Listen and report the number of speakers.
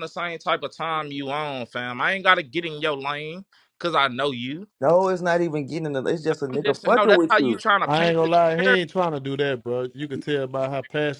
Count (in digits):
3